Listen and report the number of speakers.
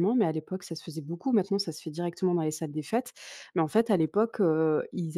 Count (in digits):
1